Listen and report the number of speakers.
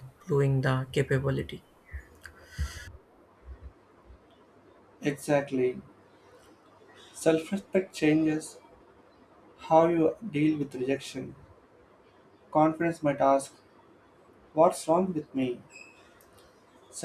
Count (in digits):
2